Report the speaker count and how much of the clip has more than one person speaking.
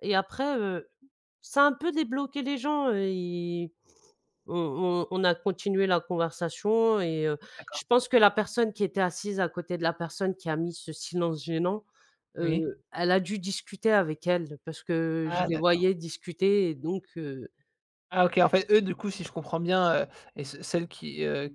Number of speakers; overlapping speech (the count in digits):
2, about 4%